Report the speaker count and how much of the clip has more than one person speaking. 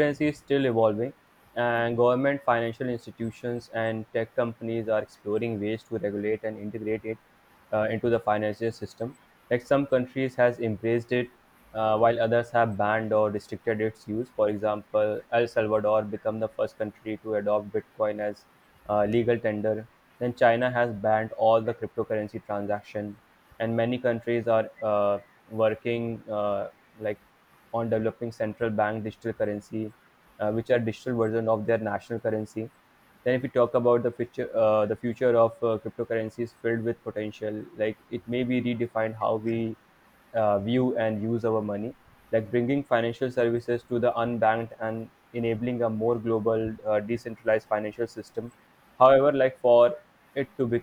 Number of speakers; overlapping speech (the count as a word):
one, no overlap